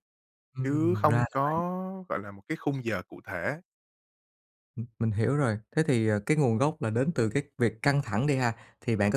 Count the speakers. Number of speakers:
two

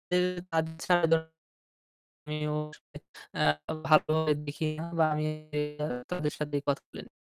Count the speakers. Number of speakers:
one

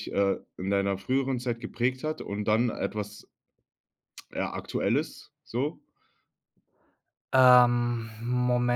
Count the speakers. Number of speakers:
two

